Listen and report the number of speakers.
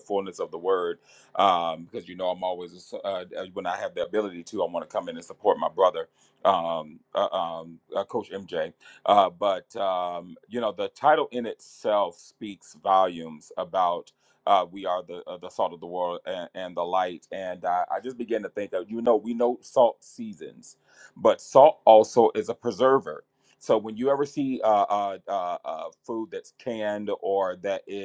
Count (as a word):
one